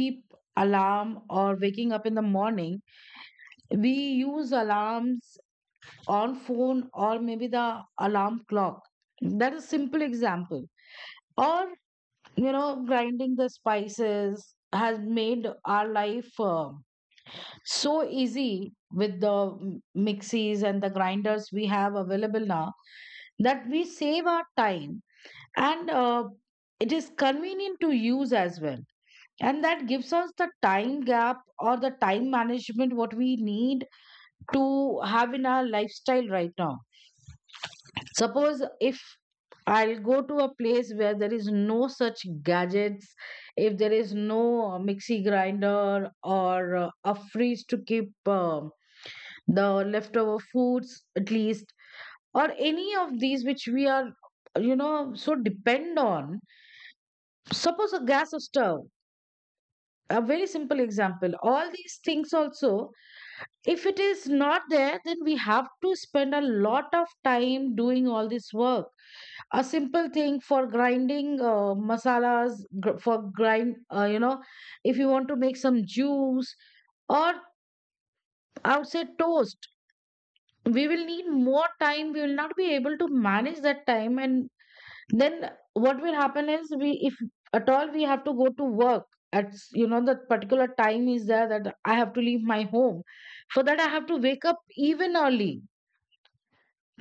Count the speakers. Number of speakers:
one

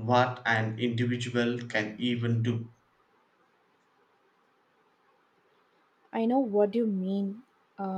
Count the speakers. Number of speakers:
two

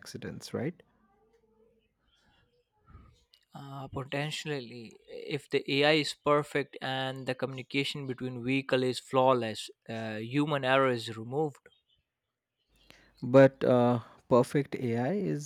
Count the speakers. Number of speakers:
two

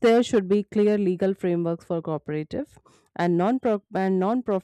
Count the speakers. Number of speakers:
one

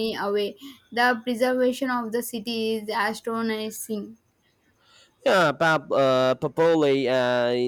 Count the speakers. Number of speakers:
two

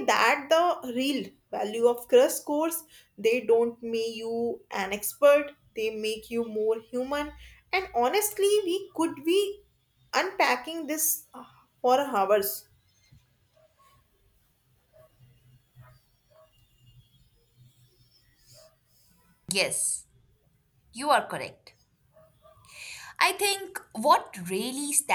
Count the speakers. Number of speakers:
two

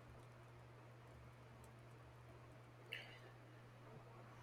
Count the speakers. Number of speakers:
zero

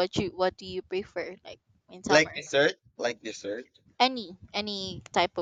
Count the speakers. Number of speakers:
two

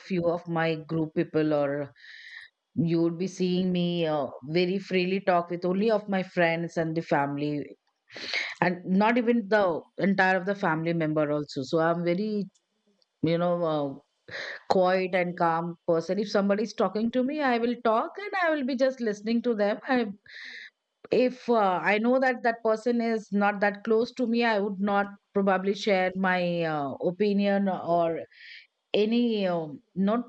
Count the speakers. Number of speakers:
one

